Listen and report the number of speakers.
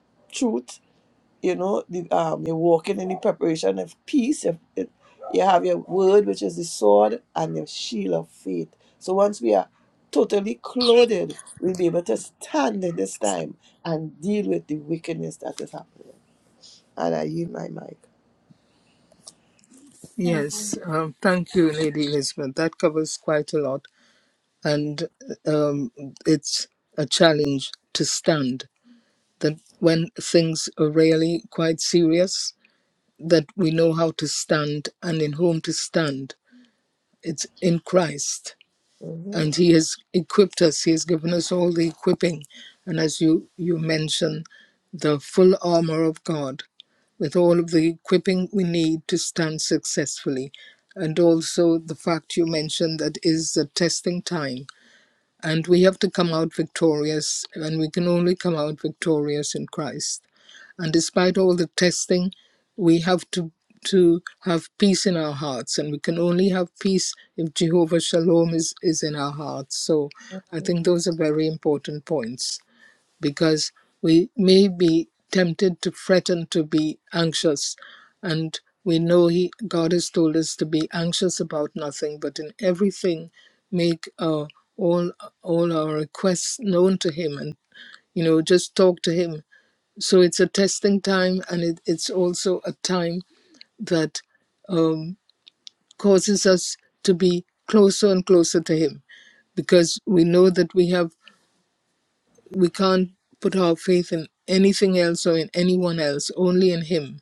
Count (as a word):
two